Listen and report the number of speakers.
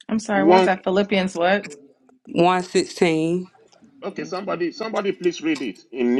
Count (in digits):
3